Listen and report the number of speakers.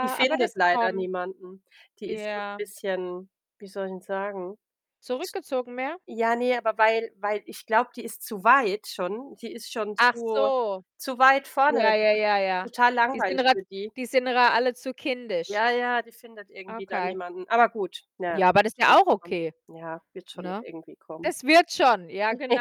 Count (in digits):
2